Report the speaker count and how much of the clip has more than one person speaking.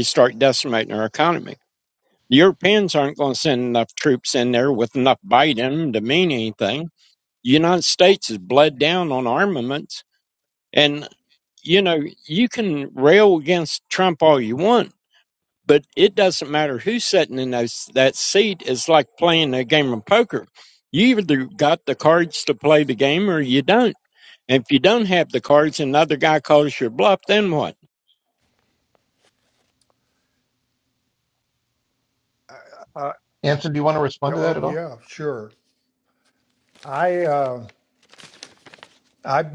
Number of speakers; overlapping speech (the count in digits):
3, about 1%